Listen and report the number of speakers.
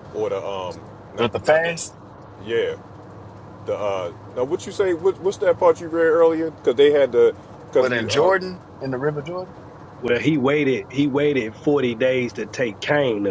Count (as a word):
three